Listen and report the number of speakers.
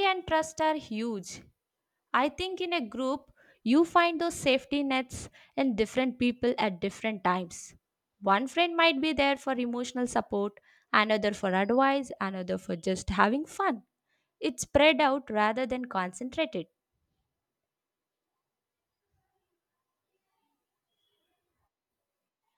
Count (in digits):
1